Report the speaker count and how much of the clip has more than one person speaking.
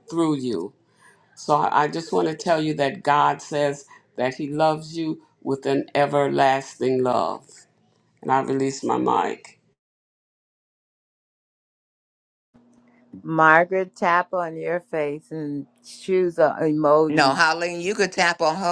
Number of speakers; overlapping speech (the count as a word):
three, about 1%